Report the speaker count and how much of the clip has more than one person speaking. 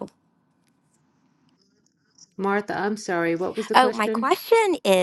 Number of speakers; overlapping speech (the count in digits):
2, about 10%